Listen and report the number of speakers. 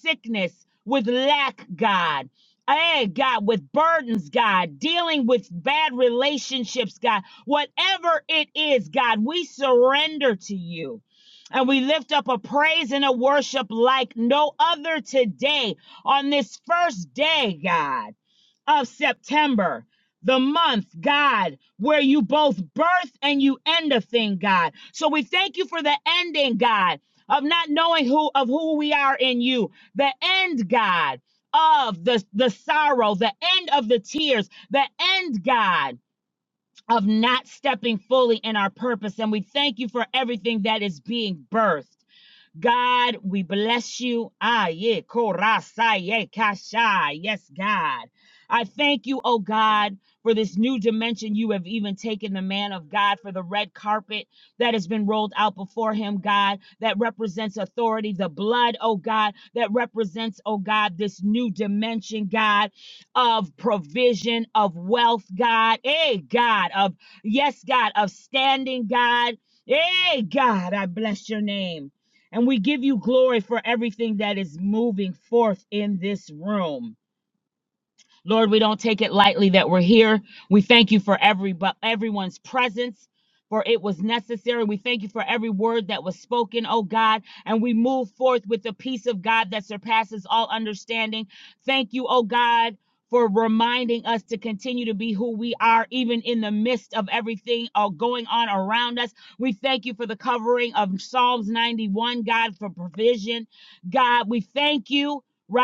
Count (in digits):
1